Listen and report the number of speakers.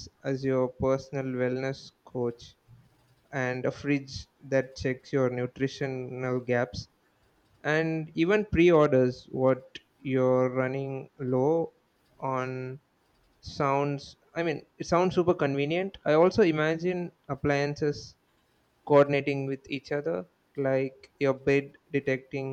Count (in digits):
1